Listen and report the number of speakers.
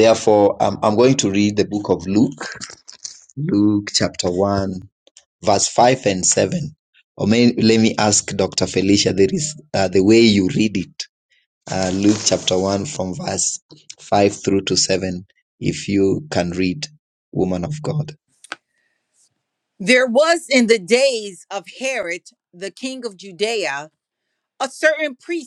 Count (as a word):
two